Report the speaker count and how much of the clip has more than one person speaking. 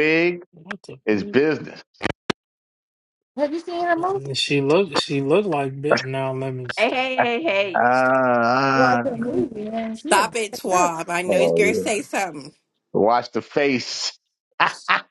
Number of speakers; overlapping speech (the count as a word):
four, about 15%